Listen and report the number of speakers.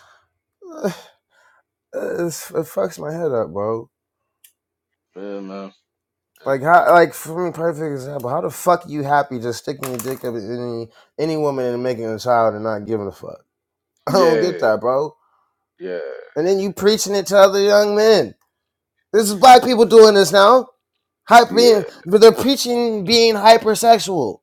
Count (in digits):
2